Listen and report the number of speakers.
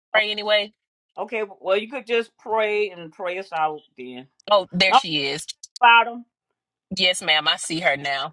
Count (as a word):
two